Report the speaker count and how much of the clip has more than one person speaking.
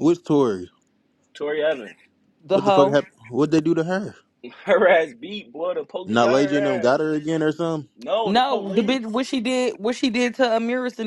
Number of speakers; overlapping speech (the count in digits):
3, about 19%